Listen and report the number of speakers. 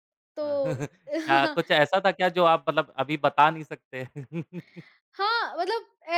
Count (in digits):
2